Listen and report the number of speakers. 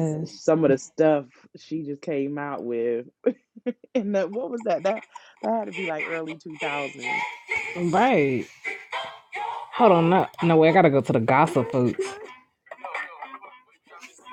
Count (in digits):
2